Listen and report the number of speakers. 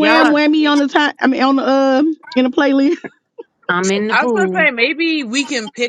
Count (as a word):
three